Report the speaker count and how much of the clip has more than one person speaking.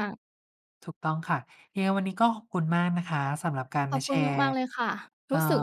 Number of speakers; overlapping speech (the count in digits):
2, about 11%